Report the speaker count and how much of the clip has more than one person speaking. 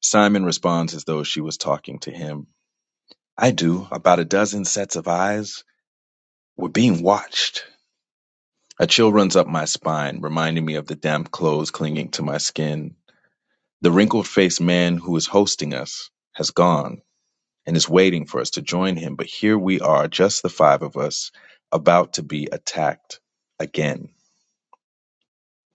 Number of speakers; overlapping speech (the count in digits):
1, no overlap